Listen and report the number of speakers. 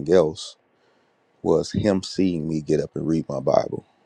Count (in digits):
1